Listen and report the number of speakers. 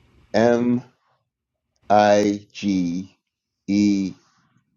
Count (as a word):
one